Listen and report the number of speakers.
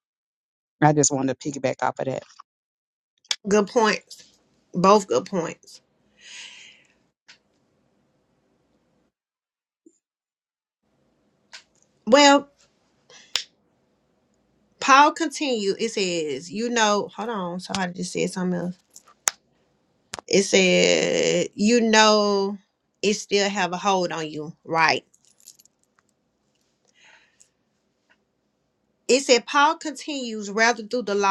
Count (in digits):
2